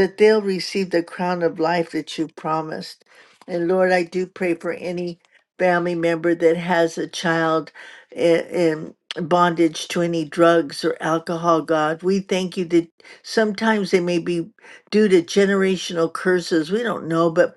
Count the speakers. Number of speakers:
one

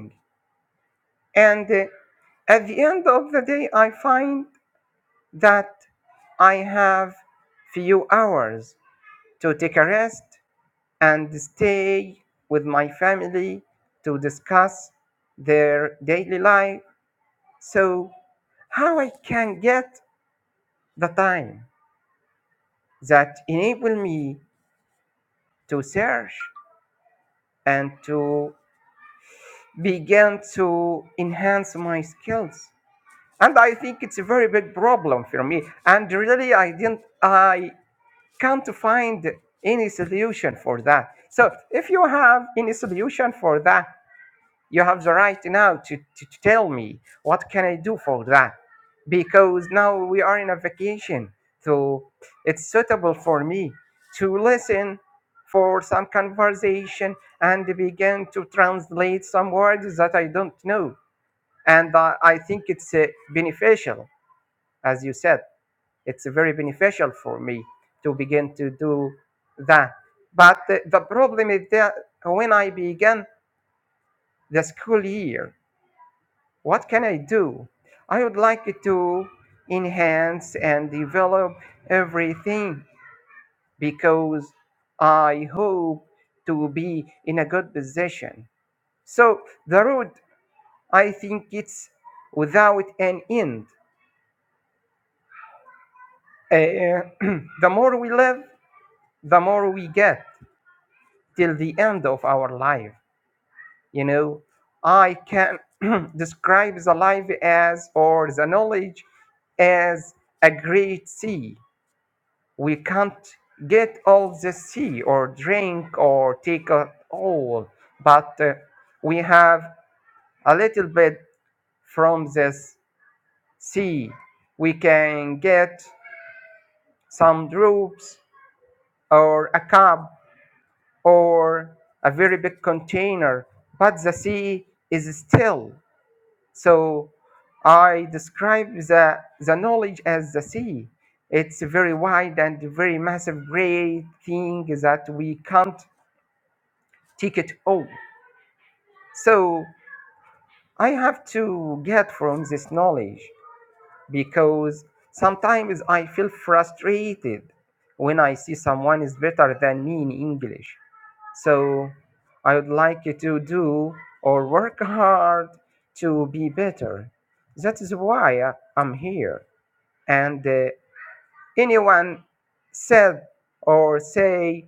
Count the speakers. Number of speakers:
one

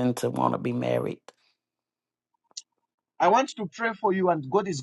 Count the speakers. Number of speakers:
two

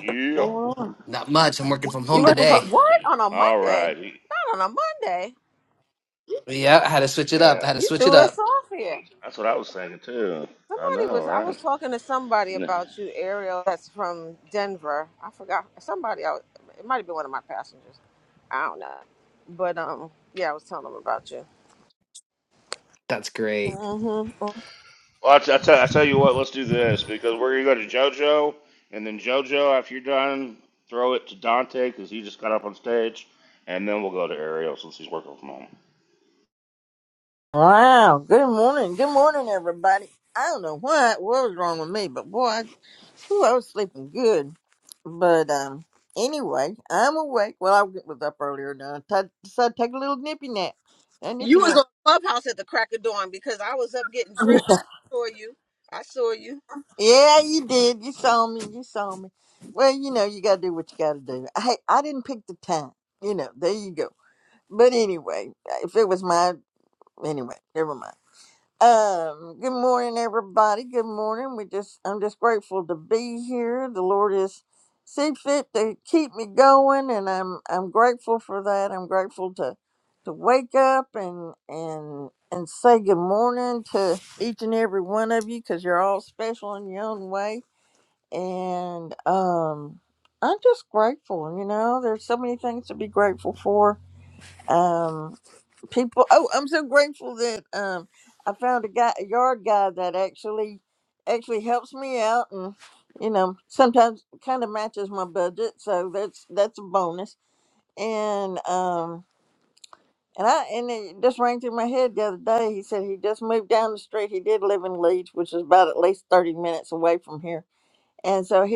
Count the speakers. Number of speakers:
four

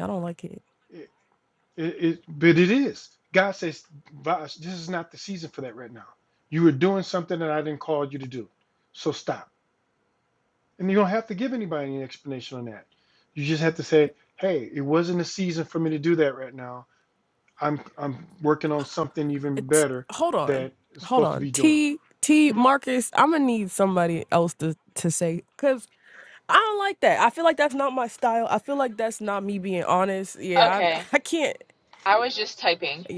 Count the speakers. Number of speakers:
three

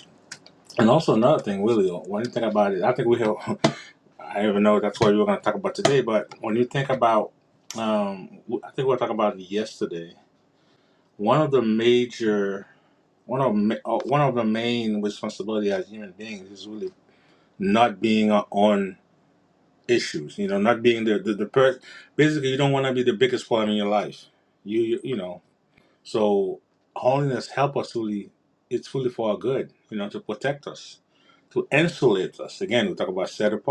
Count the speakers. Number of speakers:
one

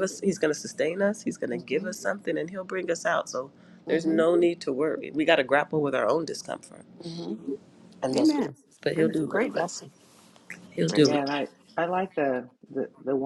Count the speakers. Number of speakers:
three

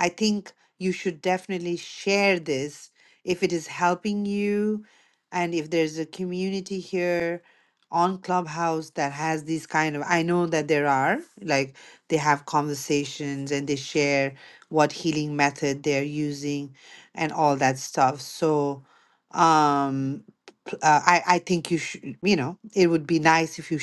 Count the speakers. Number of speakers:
one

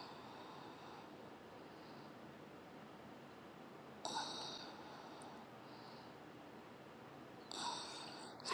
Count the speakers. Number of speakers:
zero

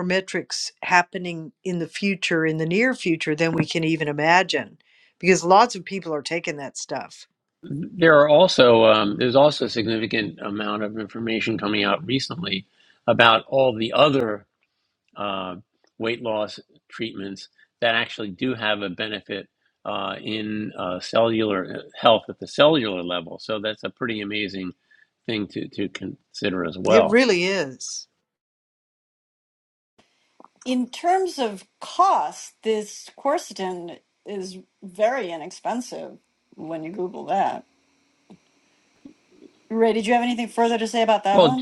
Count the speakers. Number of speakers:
three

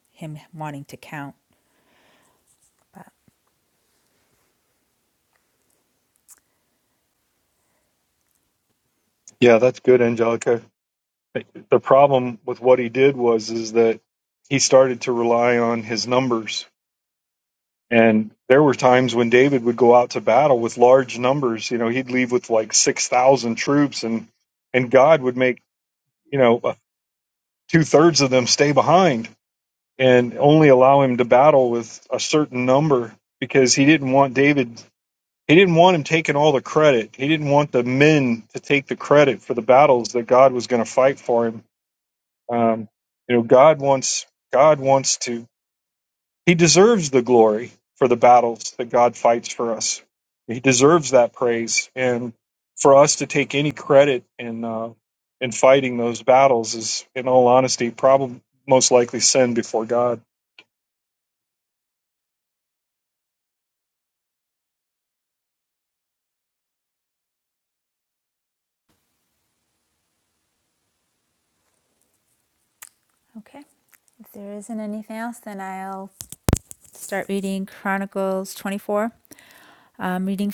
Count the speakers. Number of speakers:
two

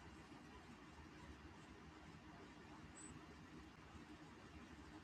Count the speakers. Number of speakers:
zero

